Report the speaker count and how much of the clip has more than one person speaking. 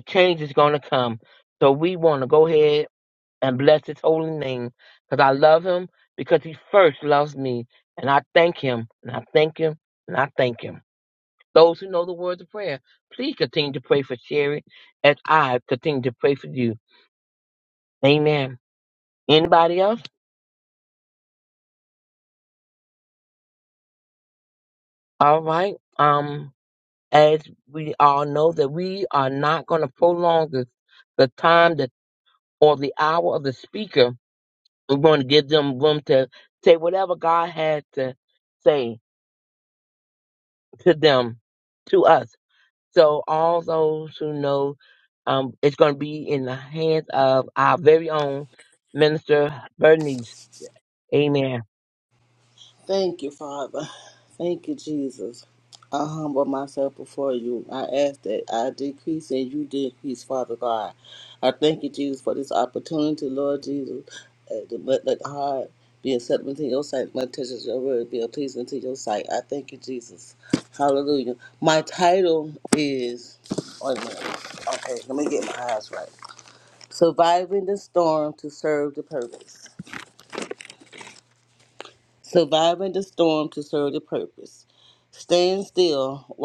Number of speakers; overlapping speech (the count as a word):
two, no overlap